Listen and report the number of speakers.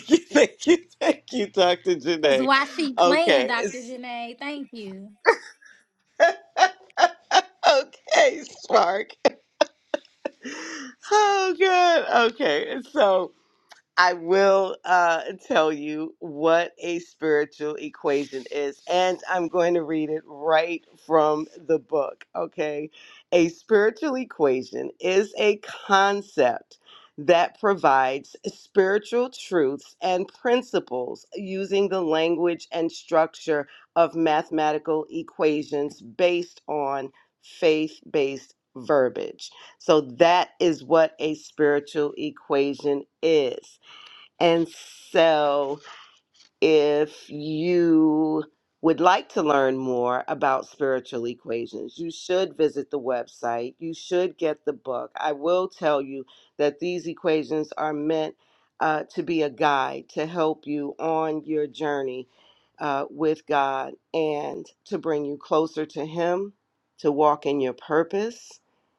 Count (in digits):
2